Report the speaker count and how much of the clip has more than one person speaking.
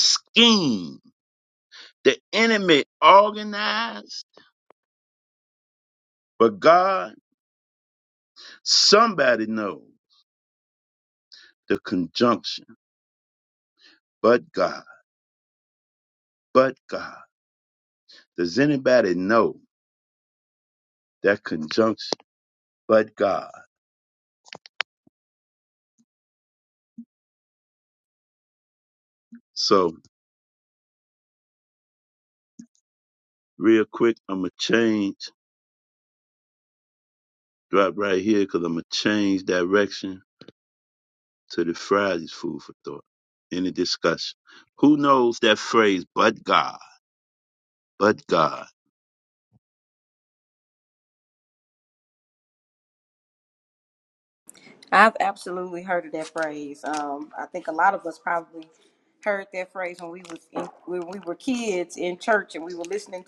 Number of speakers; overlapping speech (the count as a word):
two, no overlap